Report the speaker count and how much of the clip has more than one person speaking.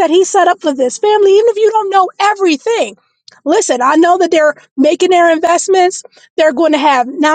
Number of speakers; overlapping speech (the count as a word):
one, no overlap